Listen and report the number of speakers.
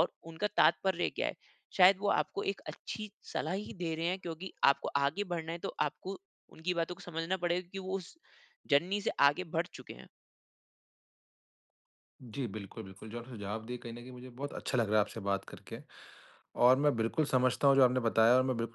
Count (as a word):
two